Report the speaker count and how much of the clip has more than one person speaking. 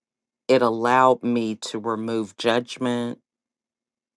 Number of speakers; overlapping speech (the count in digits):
1, no overlap